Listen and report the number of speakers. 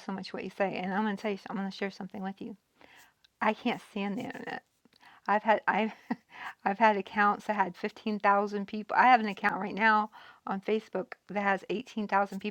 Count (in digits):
1